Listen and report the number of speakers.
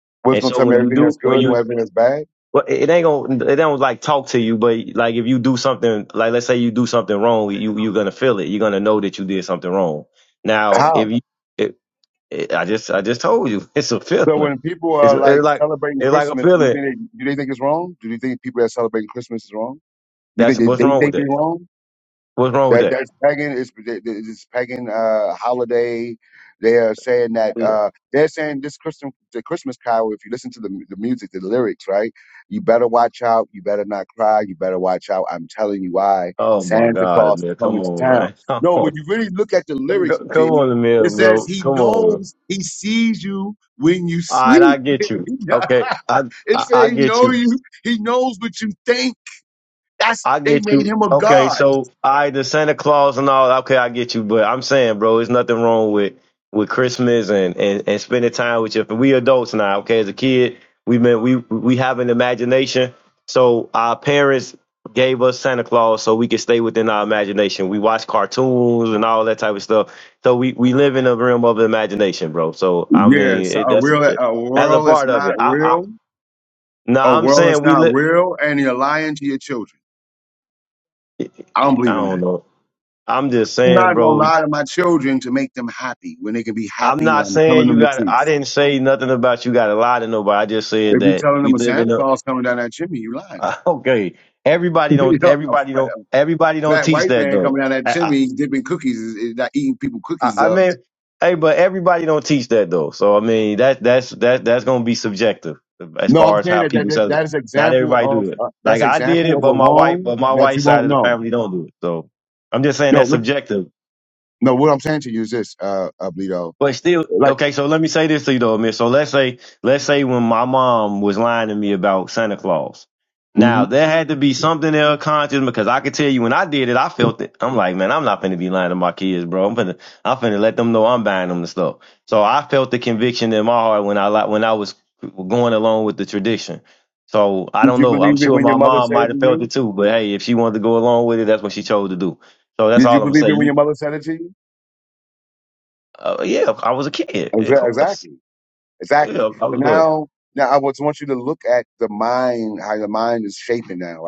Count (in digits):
2